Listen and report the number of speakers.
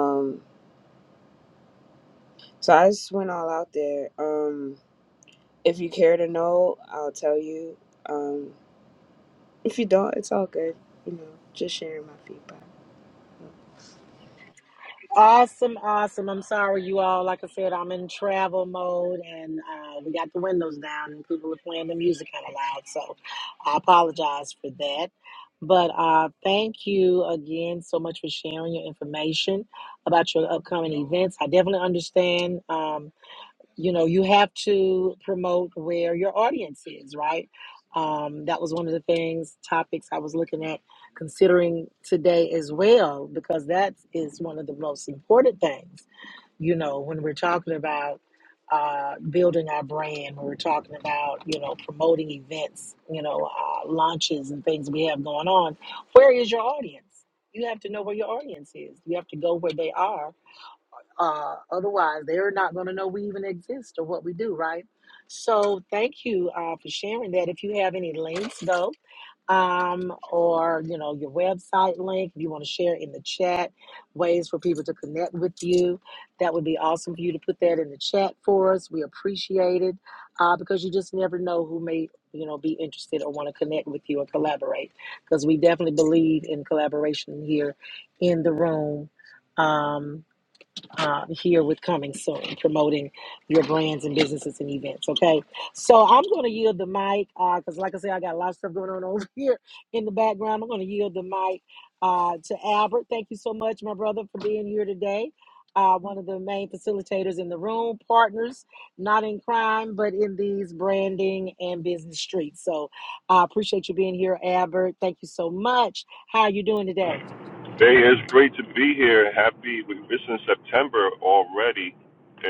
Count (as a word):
three